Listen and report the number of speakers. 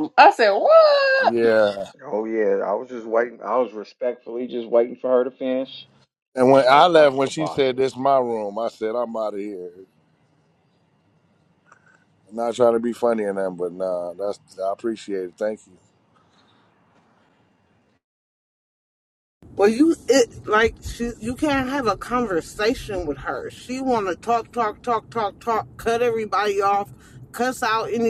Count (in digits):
4